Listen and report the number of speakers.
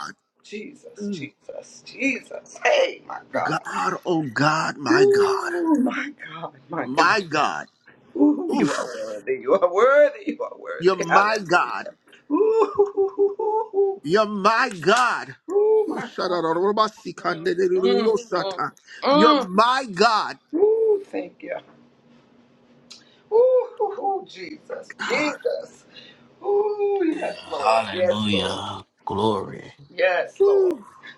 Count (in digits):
3